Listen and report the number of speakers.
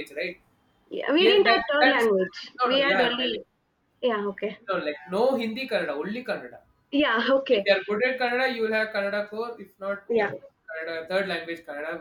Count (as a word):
two